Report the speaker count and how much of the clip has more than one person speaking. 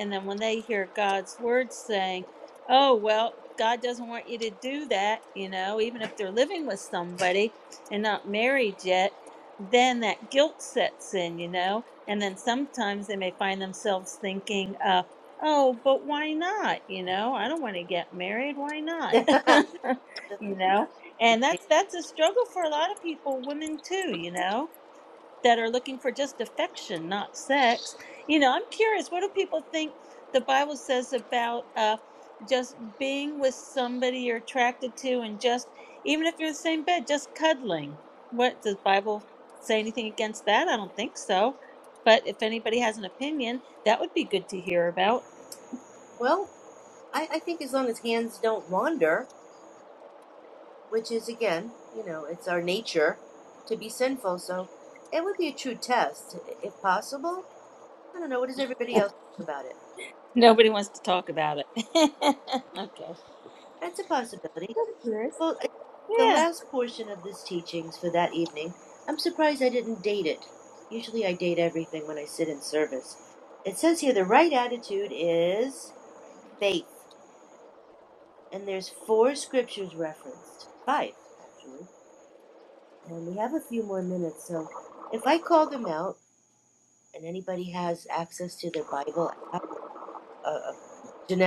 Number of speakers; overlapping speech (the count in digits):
2, under 1%